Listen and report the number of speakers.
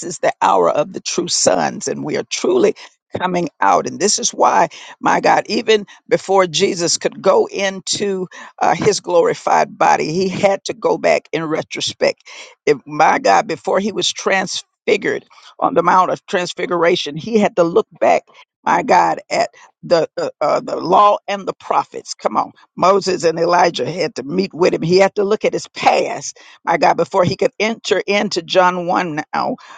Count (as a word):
one